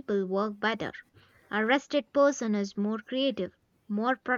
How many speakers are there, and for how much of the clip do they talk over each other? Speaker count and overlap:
one, no overlap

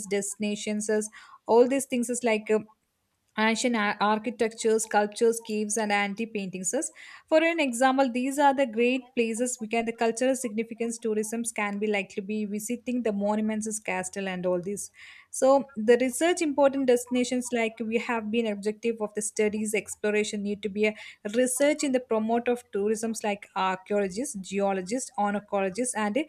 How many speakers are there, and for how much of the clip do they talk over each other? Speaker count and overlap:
one, no overlap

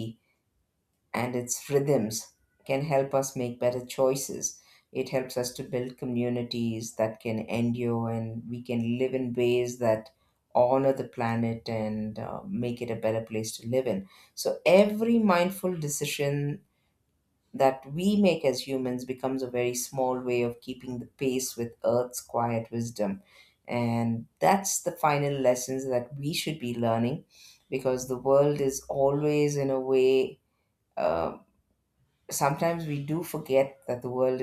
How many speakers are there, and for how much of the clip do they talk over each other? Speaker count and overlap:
one, no overlap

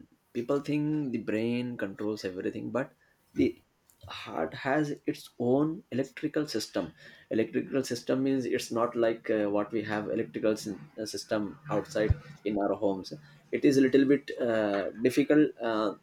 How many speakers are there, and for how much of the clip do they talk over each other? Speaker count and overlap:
one, no overlap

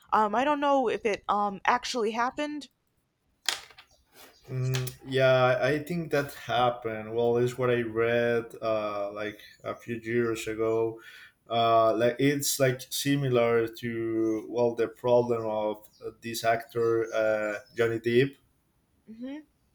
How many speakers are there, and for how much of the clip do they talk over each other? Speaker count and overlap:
two, no overlap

